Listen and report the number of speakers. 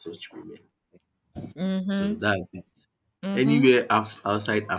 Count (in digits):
2